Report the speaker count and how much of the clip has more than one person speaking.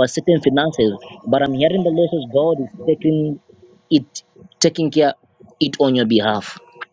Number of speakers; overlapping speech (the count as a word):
one, no overlap